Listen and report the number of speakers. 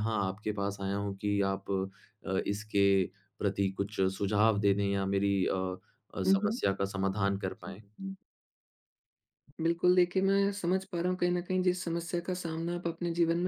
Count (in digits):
2